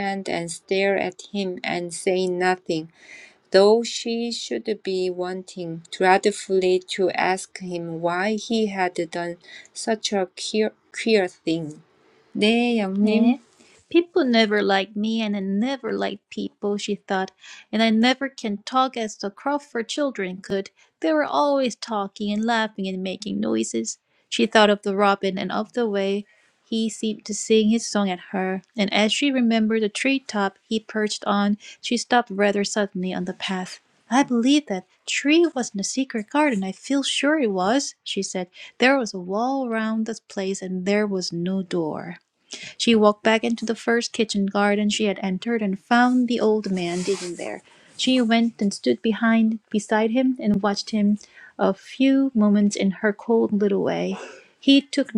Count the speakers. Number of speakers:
2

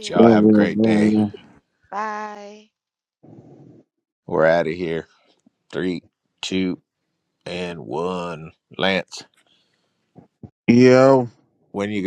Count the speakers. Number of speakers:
3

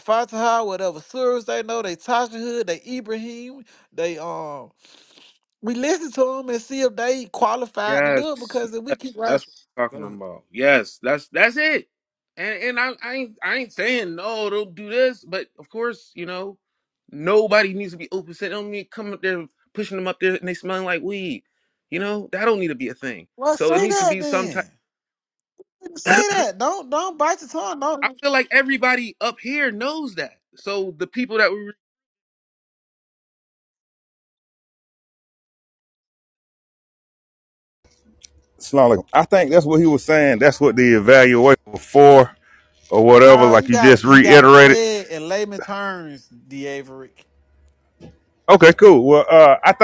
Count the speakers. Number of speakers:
3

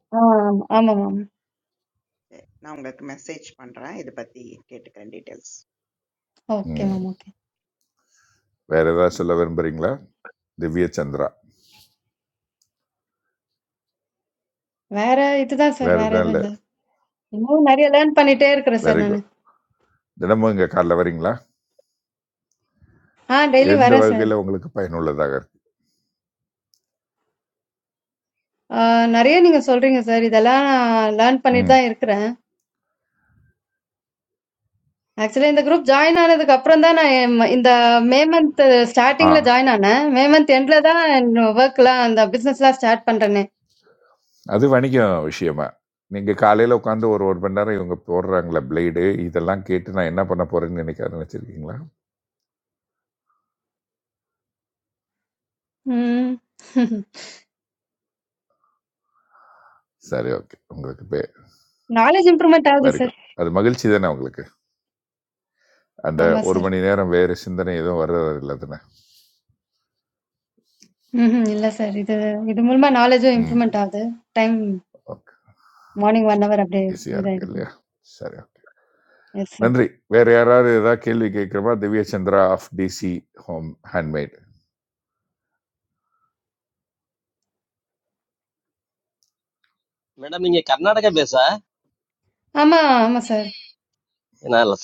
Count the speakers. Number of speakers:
4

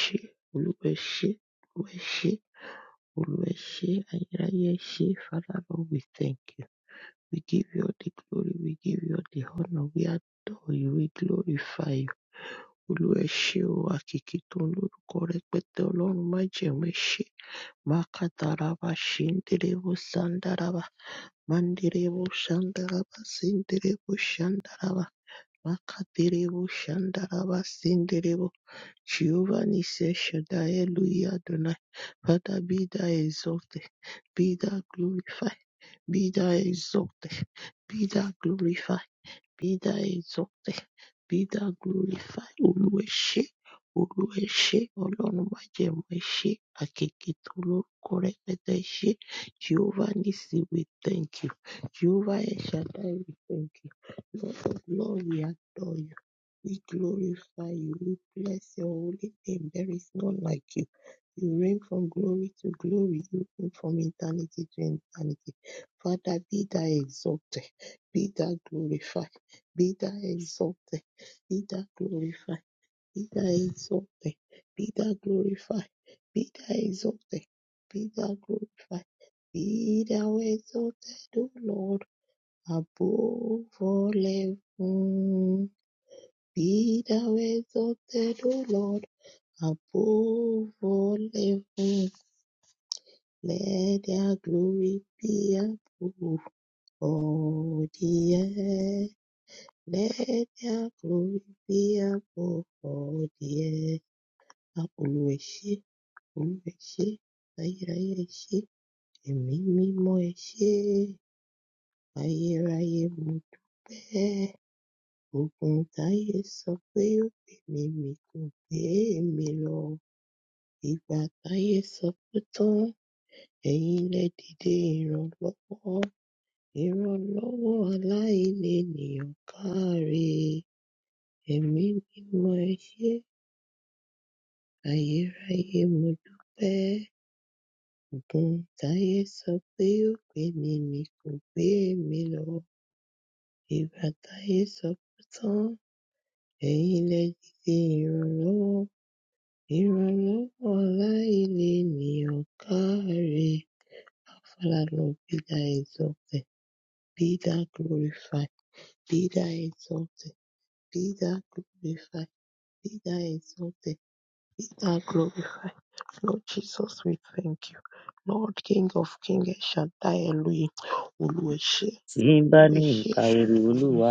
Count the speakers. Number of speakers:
2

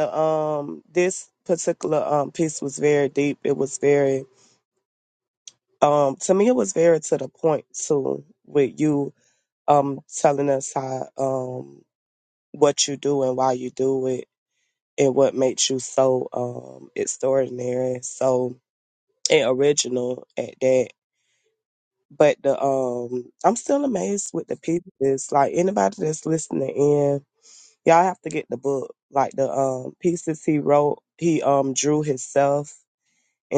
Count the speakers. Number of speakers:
1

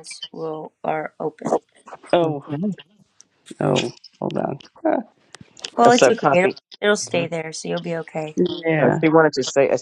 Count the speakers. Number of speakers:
3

